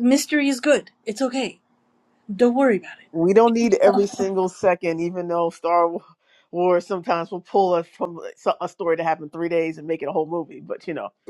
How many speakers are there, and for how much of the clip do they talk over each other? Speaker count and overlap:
two, no overlap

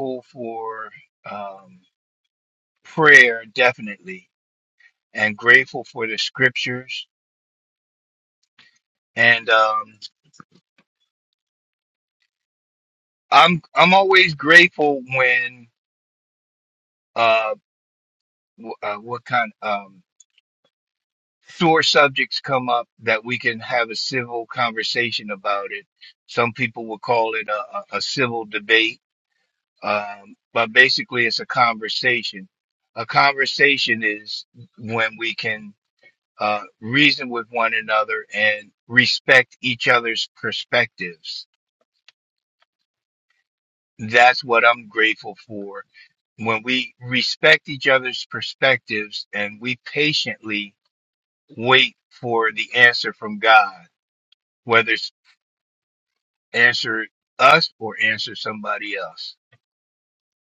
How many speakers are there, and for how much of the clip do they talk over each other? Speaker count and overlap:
one, no overlap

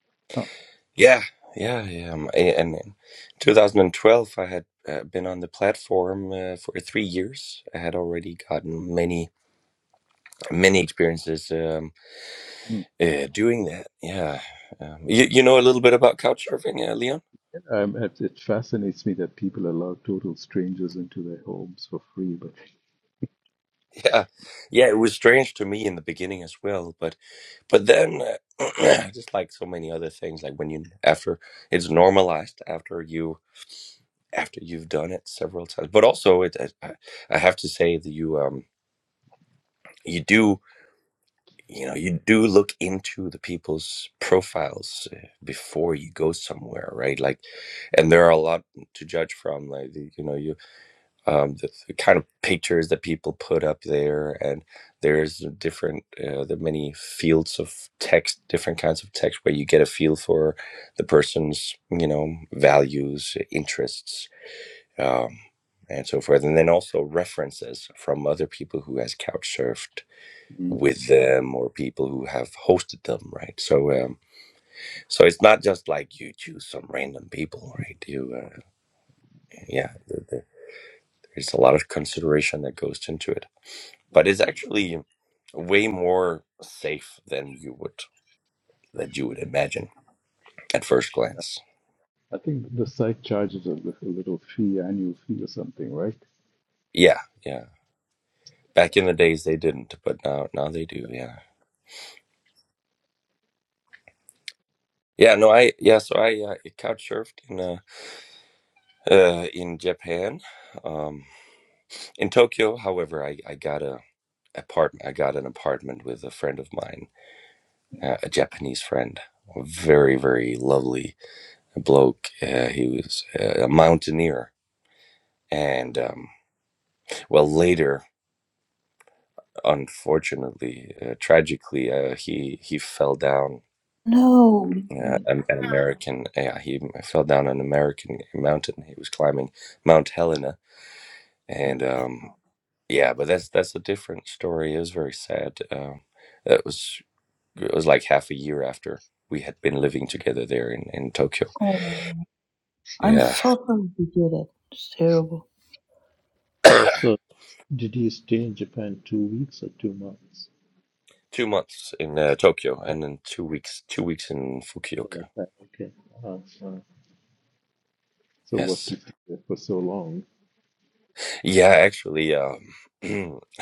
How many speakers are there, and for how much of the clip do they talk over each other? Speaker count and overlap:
three, about 1%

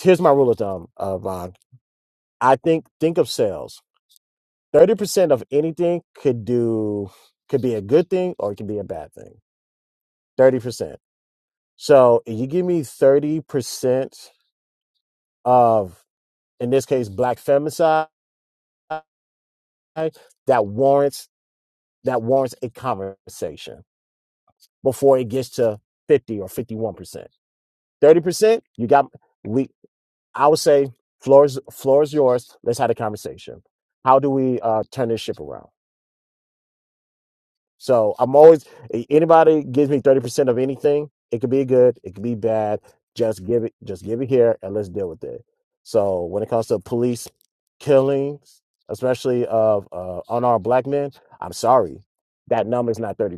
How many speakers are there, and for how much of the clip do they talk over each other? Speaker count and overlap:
one, no overlap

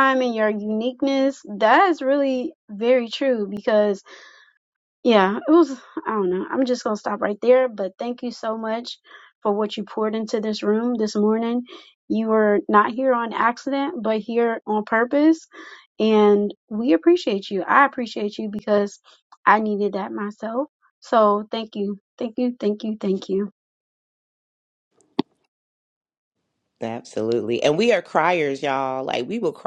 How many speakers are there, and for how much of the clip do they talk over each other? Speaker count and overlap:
two, no overlap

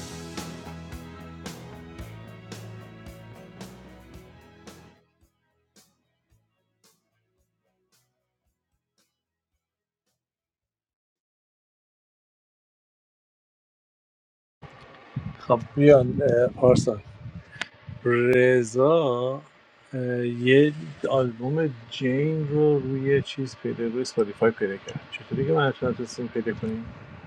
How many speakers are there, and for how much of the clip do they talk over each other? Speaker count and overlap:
one, no overlap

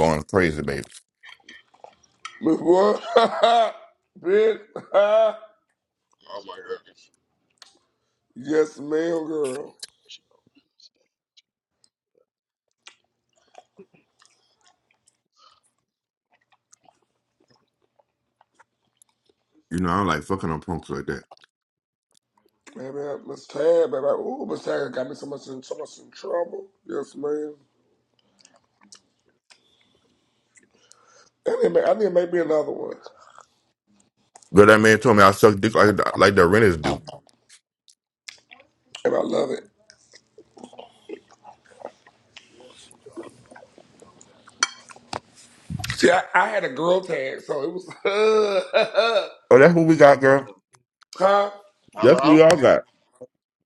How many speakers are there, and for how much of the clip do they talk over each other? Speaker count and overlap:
three, about 1%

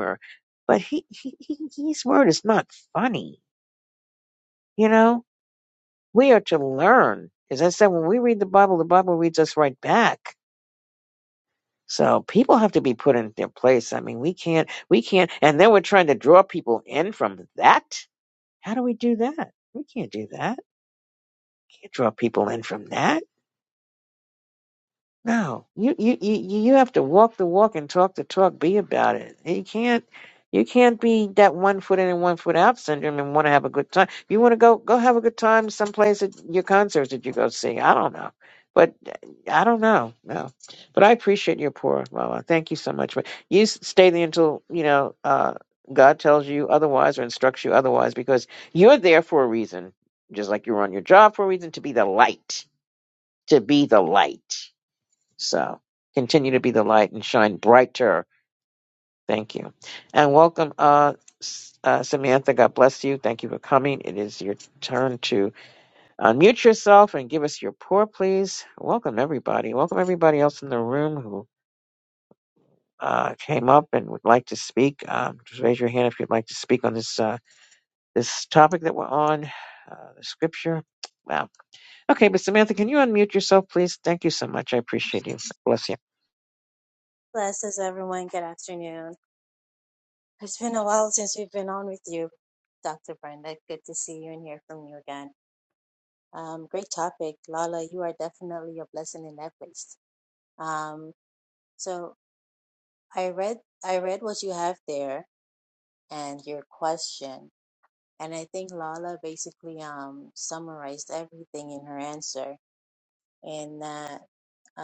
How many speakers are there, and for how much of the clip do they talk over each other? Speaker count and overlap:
two, no overlap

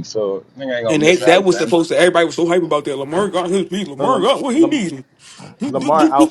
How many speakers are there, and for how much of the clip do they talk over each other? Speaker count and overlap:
three, about 28%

